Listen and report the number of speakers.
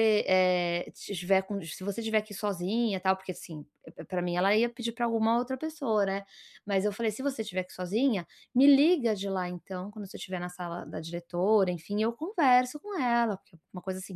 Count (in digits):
1